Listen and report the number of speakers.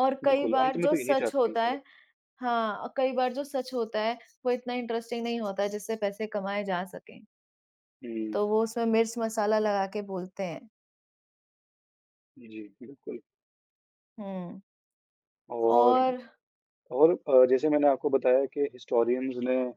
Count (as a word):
two